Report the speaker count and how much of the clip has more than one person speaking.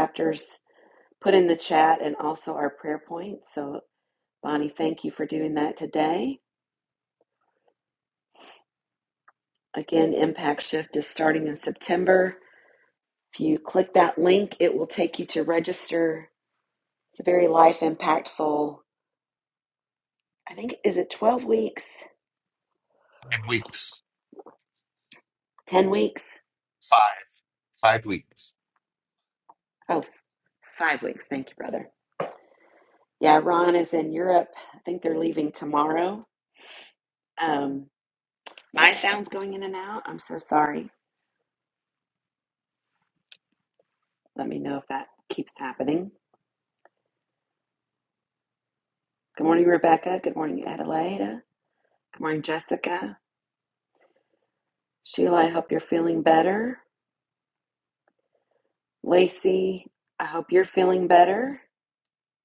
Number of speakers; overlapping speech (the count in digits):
2, no overlap